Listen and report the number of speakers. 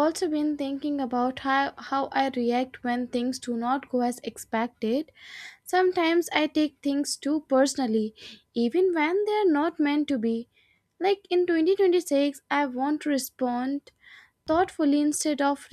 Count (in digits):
1